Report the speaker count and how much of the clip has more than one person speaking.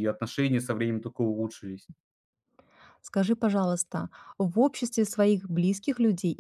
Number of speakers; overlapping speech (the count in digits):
2, no overlap